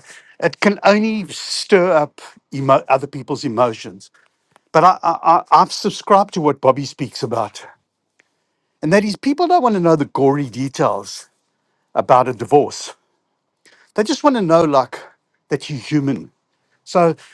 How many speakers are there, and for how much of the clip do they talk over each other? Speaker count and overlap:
one, no overlap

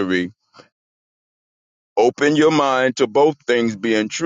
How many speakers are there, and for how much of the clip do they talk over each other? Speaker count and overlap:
one, no overlap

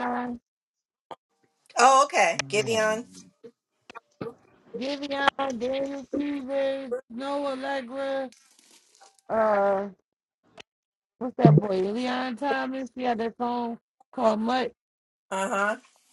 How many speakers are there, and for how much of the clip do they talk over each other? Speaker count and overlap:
two, no overlap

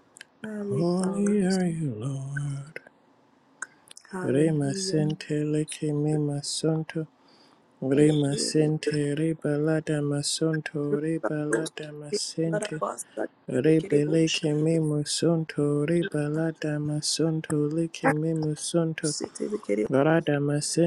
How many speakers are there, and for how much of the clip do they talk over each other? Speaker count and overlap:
two, about 20%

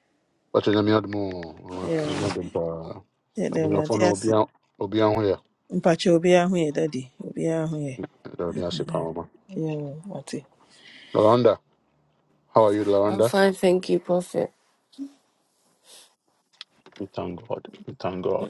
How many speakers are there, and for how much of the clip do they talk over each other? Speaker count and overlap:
three, about 9%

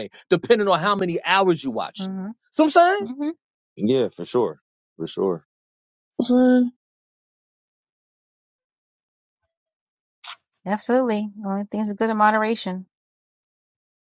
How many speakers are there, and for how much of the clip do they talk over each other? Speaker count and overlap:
three, about 1%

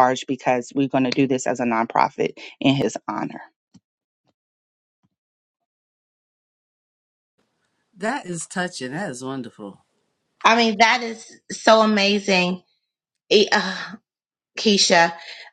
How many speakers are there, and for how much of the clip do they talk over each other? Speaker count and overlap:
three, no overlap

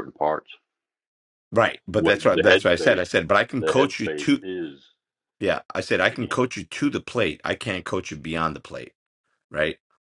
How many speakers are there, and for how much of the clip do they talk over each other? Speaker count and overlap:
two, about 21%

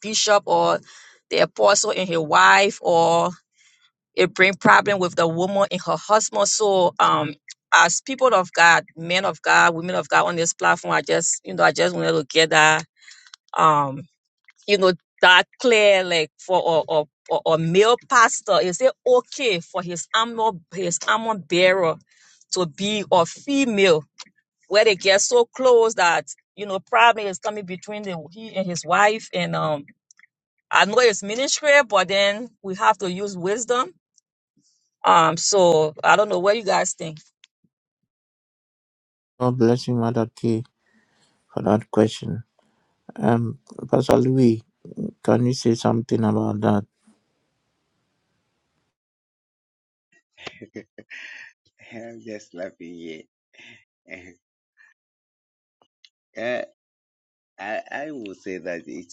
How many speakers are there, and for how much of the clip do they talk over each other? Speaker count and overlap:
three, no overlap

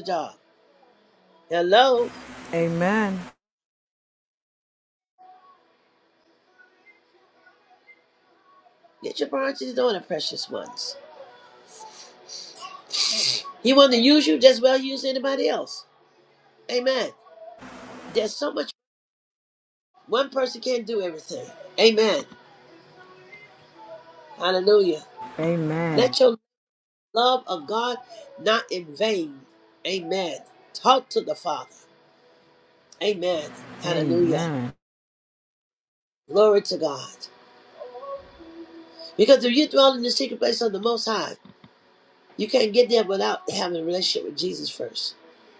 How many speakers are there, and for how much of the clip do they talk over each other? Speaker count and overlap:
two, about 2%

